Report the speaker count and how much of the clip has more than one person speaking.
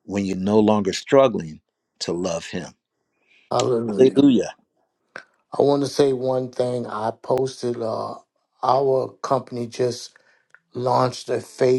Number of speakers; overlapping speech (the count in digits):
2, about 3%